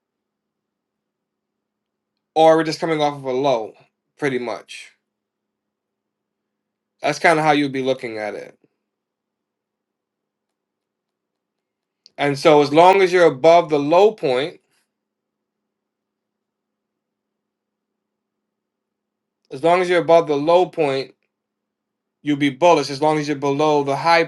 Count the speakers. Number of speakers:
one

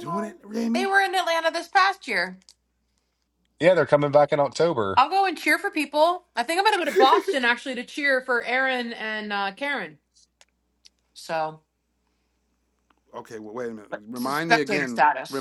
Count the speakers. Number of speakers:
three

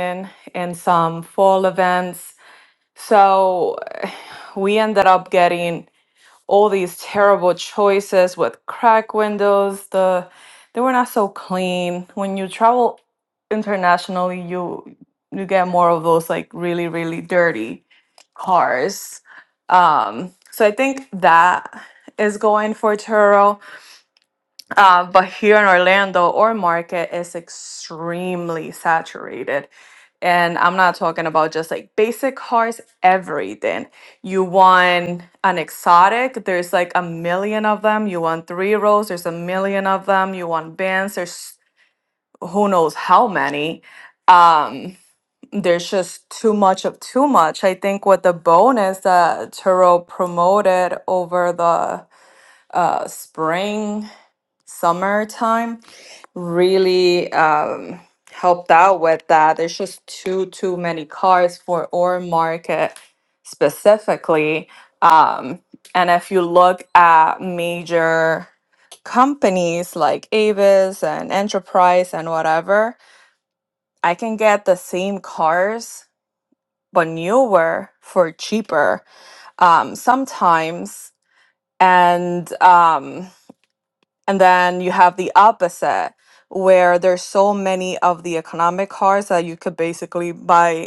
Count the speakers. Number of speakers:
one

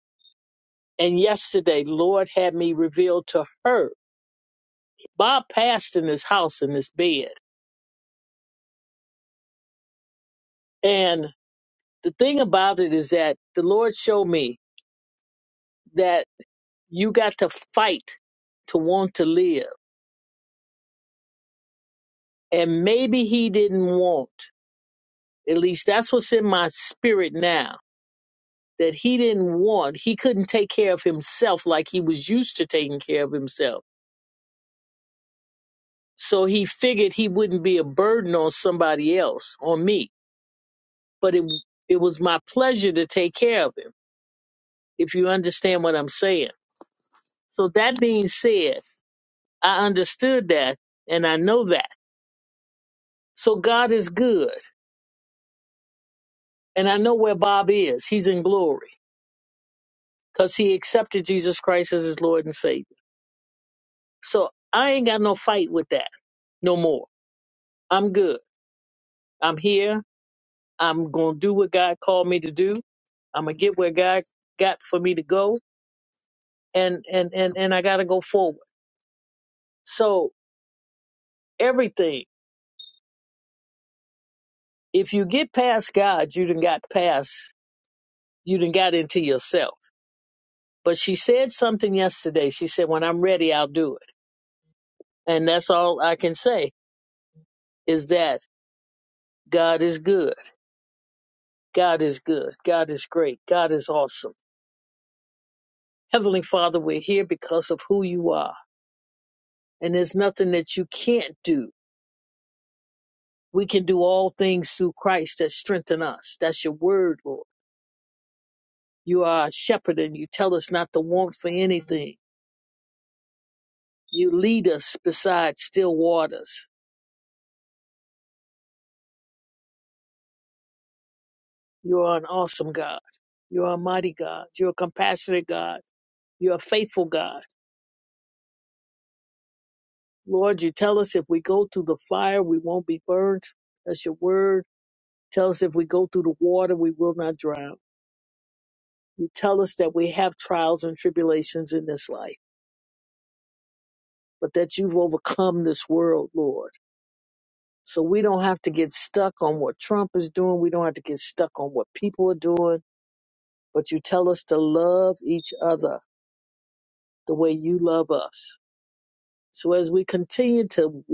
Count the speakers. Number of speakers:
one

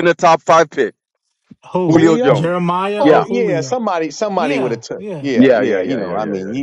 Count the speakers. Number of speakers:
three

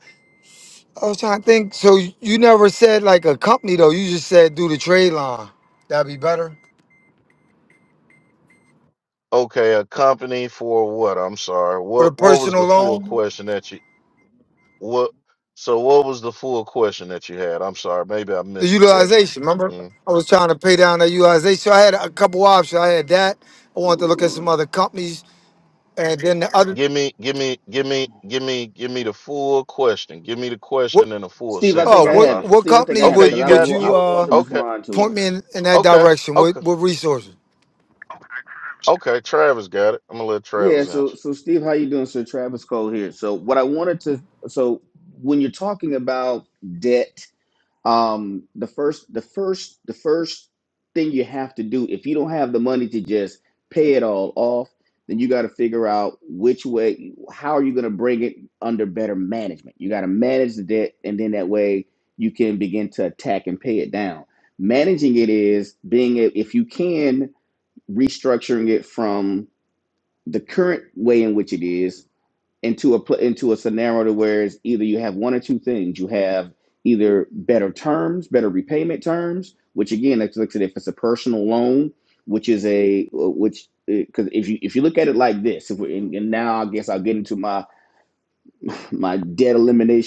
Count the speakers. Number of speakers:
three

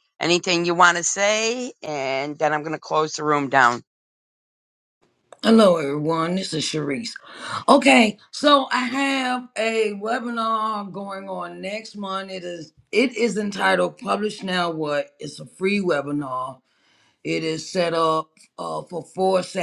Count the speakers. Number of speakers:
two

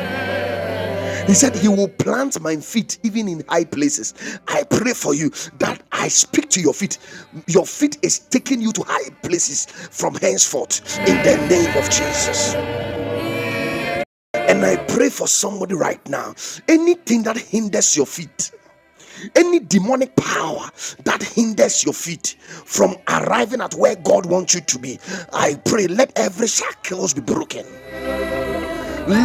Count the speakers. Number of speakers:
one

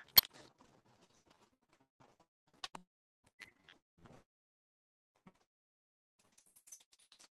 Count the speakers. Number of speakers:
zero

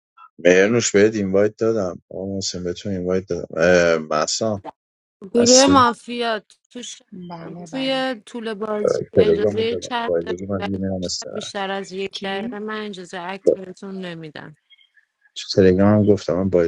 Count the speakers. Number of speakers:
three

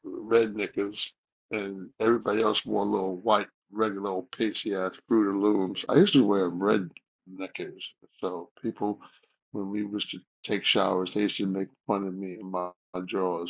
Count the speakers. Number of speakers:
one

